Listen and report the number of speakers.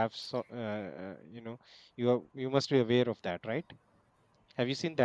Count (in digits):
1